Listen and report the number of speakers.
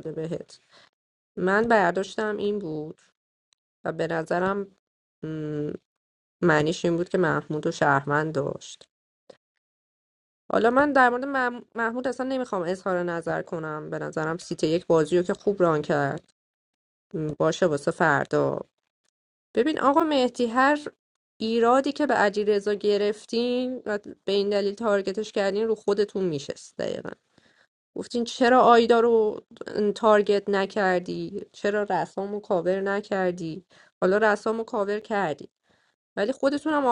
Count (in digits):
1